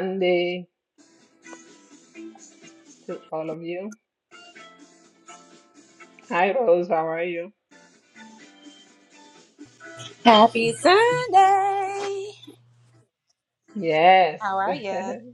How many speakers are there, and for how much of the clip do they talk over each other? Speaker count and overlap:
2, under 1%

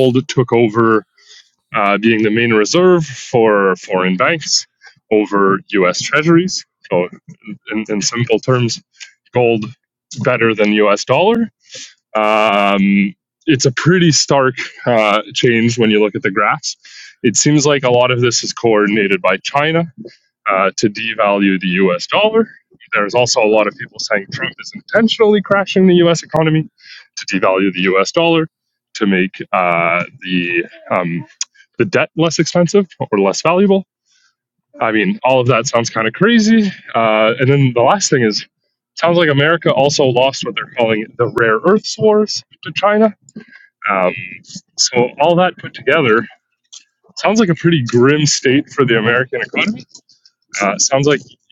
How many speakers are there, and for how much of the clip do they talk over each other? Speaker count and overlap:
1, no overlap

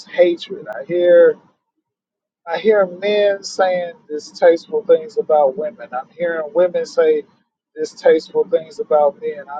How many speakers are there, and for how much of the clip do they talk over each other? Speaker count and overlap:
1, no overlap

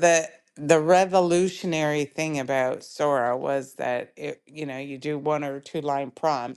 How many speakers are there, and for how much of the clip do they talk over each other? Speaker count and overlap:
1, no overlap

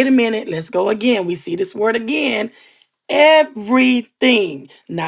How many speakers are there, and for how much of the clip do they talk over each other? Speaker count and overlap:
1, no overlap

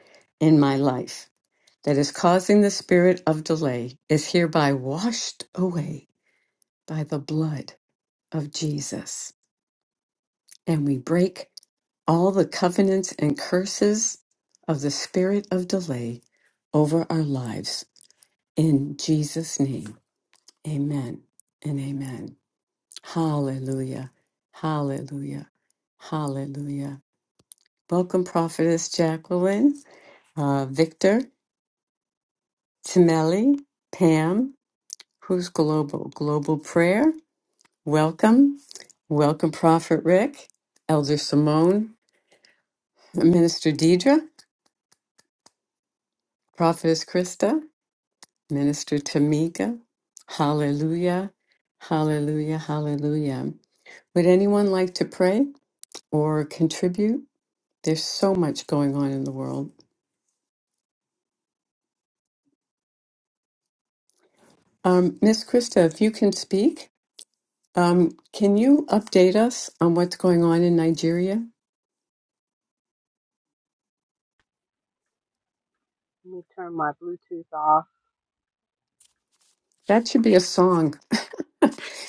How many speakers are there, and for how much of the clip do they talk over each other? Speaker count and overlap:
2, no overlap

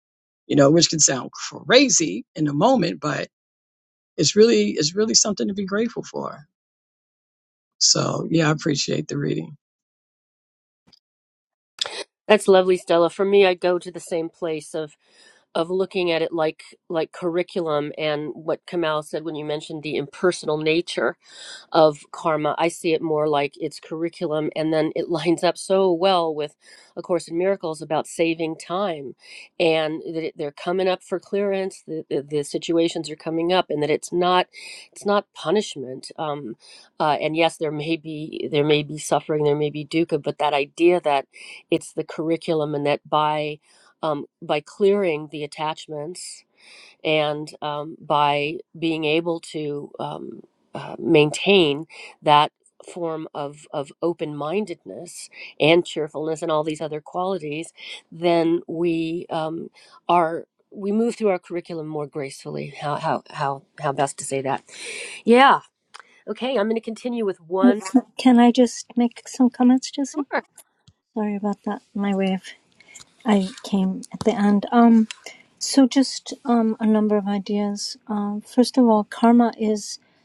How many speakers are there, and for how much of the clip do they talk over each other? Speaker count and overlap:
3, no overlap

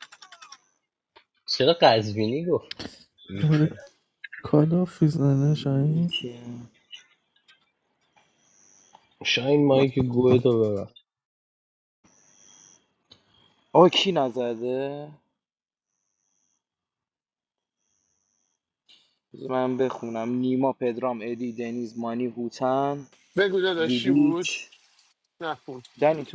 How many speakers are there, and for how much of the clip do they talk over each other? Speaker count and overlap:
4, about 6%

